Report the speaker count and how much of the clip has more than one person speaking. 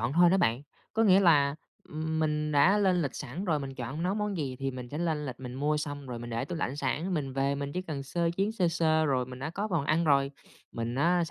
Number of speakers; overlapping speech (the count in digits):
1, no overlap